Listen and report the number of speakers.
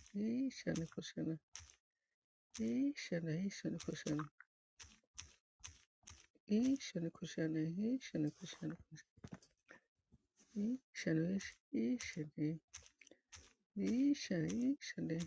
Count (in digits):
1